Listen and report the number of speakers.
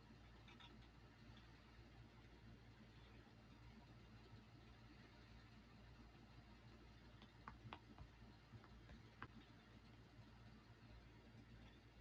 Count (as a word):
zero